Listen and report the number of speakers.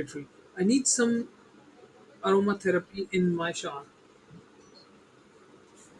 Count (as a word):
one